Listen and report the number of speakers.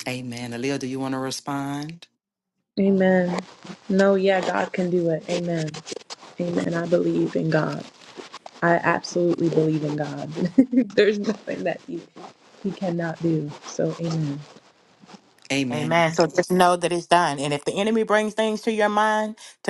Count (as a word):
three